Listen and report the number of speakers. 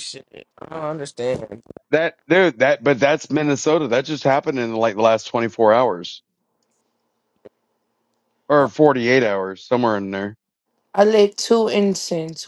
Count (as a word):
three